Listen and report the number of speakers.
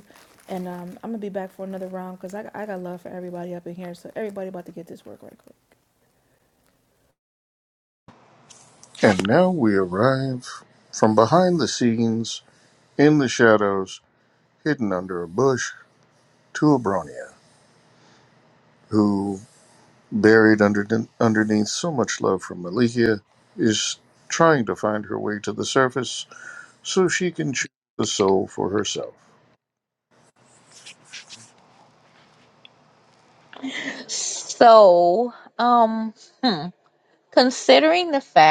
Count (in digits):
3